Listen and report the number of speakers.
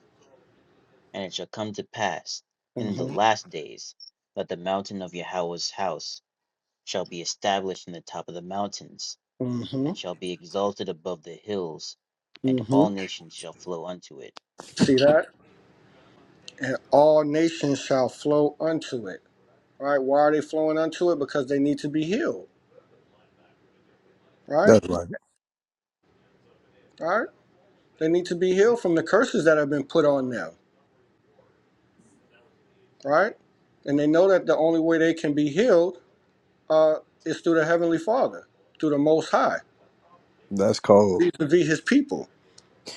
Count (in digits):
3